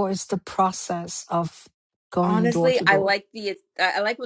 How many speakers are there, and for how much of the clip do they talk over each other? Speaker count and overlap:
2, about 21%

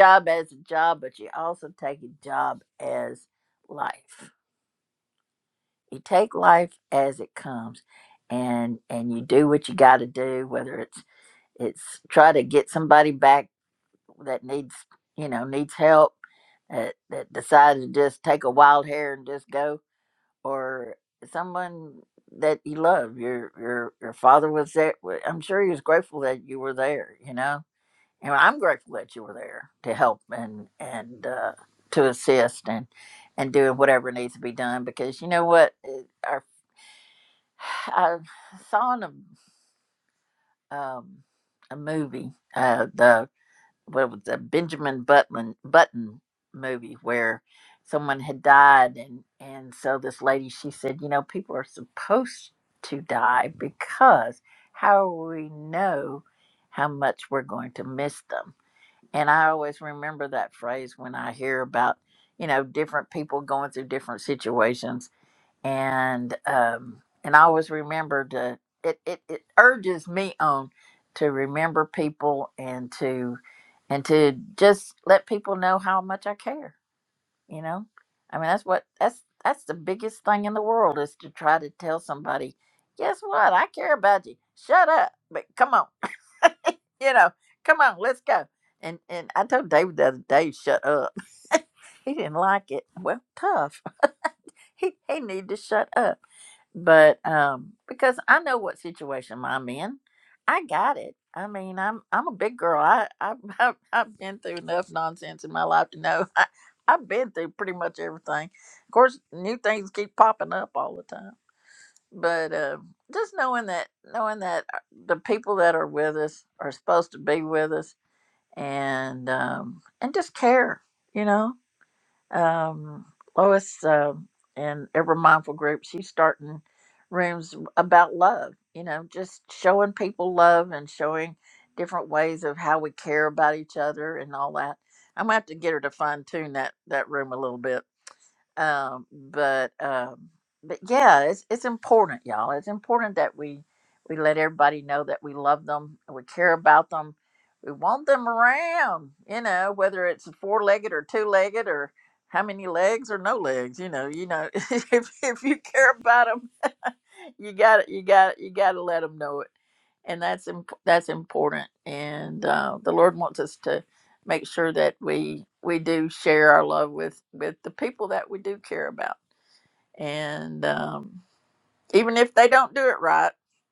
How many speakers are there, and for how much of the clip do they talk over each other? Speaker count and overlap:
1, no overlap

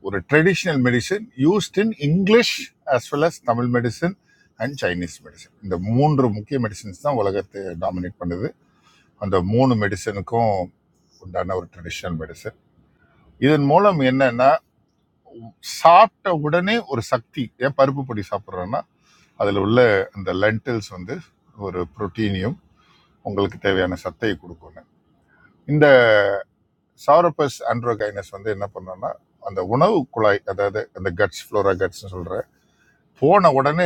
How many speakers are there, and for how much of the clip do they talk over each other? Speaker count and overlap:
1, no overlap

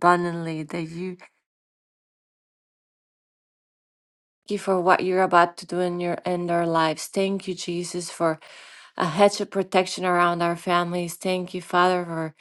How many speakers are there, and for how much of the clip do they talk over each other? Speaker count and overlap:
1, no overlap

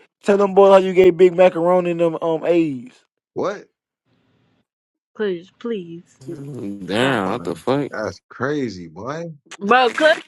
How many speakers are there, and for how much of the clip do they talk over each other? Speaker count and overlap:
4, about 6%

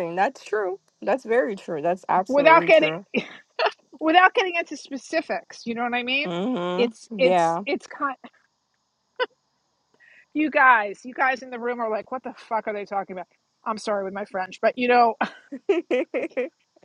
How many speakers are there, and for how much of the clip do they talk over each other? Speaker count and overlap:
2, about 8%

